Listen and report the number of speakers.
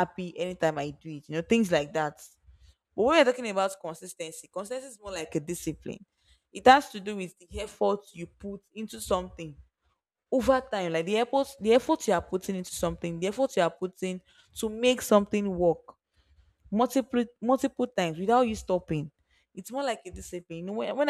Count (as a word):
one